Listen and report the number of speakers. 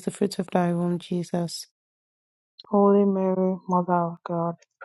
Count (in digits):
2